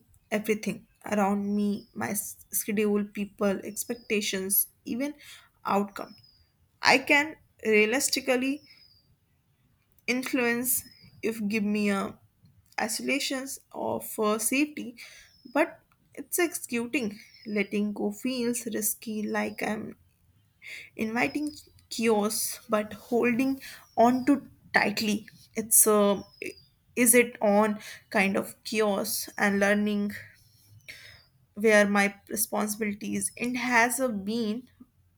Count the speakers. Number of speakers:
1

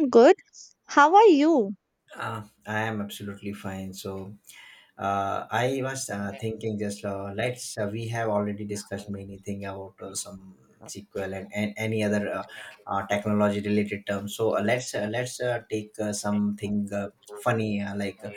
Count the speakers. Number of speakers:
2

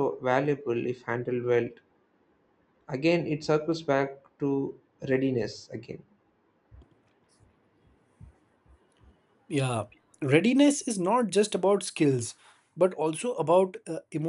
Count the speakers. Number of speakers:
2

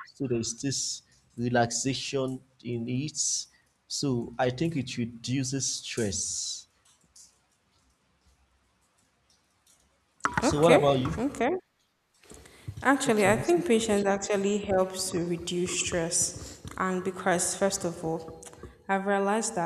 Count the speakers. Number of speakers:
2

